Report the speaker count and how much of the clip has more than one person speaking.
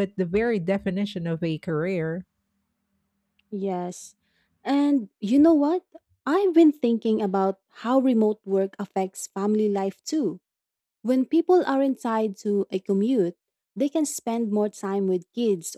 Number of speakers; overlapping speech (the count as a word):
two, no overlap